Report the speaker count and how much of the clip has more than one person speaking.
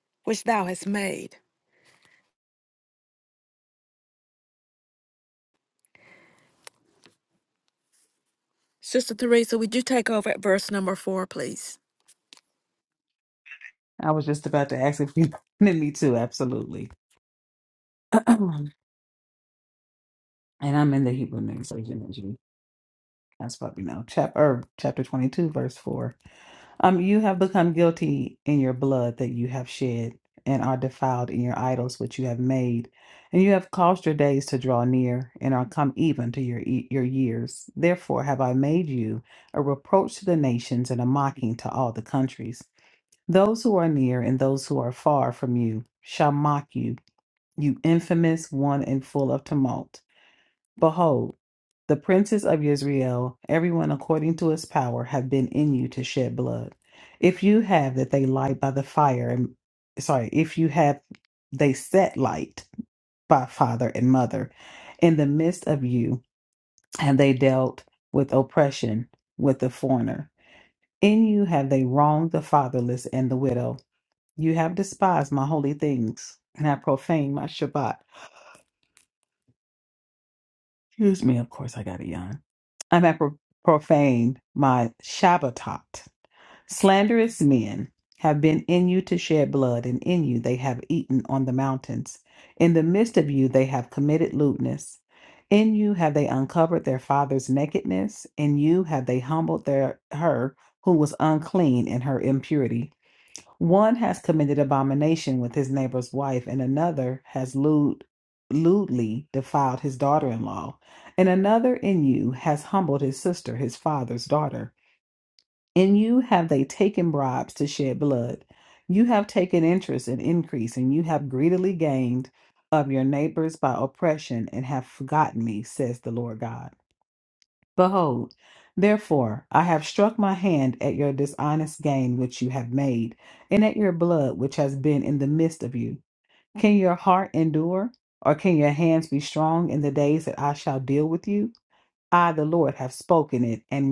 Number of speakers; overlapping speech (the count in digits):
2, no overlap